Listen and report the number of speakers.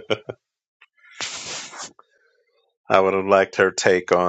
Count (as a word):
one